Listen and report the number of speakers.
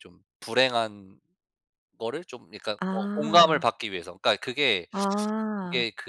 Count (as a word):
two